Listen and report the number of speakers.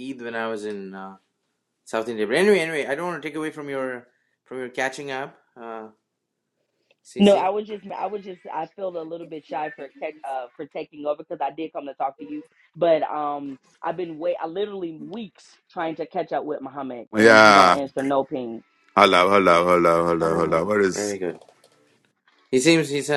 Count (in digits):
3